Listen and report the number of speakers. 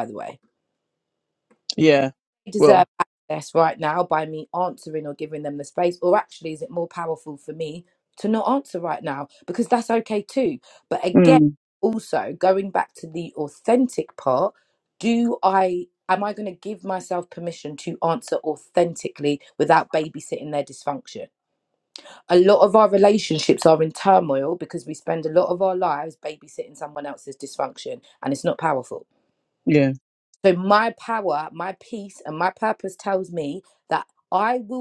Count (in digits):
2